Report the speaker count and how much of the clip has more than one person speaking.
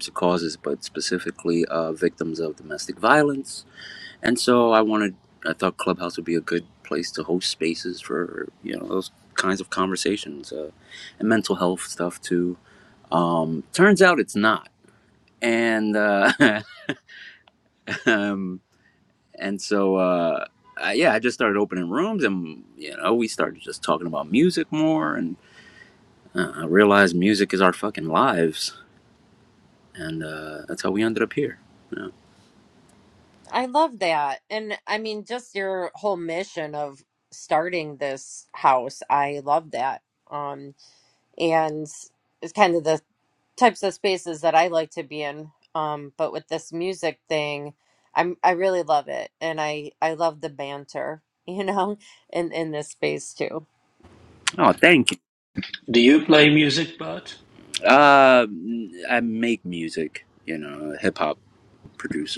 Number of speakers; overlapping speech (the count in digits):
3, no overlap